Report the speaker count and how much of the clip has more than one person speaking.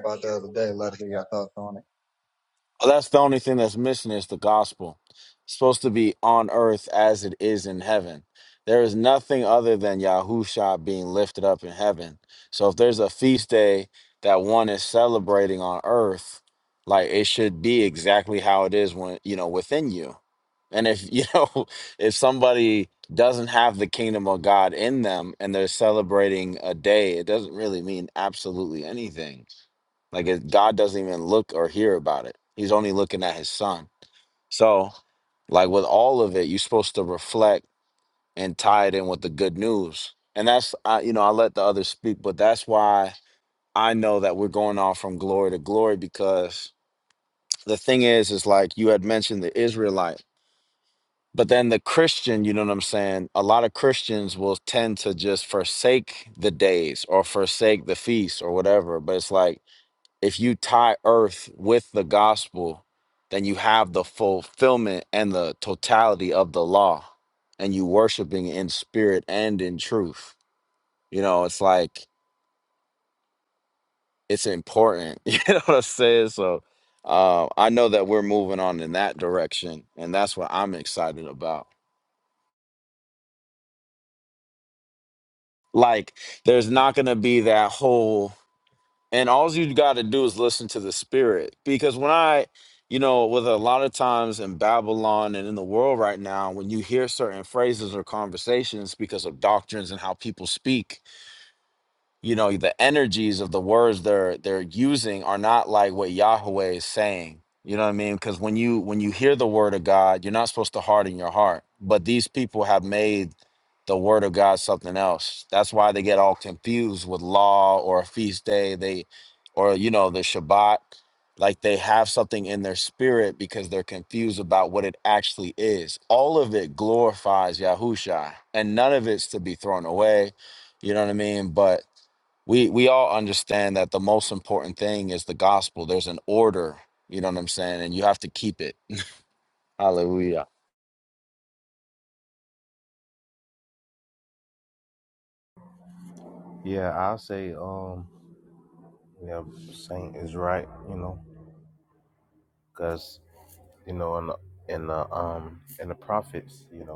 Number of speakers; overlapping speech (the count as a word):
three, no overlap